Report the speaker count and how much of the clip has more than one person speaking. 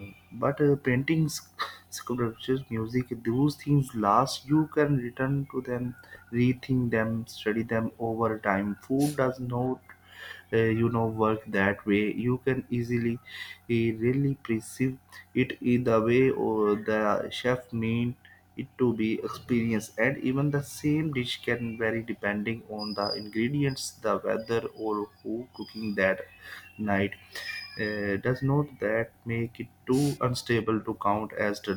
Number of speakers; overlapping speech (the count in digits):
1, no overlap